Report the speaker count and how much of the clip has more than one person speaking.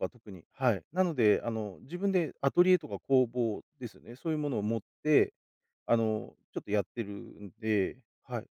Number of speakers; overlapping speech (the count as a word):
one, no overlap